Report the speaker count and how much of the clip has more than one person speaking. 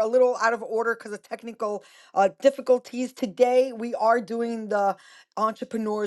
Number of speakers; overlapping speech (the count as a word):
one, no overlap